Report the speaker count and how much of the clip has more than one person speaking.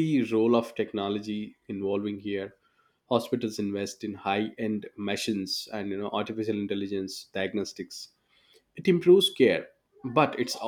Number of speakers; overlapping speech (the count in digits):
1, no overlap